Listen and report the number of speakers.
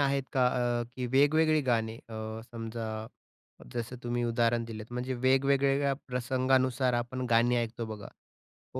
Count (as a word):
one